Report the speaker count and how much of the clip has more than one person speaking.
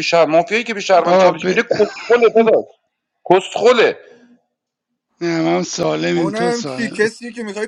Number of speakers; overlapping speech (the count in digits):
3, about 18%